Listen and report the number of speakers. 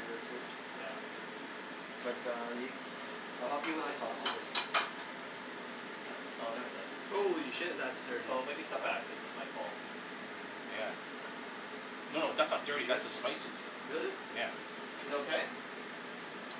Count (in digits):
4